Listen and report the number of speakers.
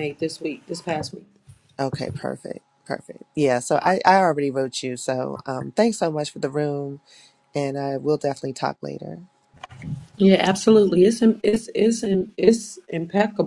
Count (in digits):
2